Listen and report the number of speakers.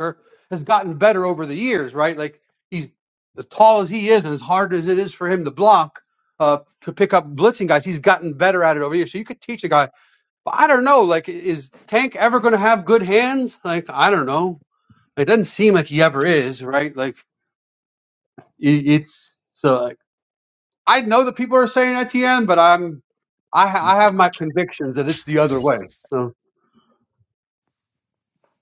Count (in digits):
1